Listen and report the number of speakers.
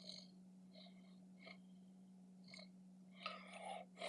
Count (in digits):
0